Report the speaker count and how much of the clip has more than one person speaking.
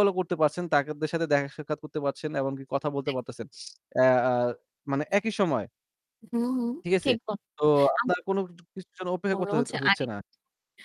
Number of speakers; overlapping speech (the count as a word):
two, about 12%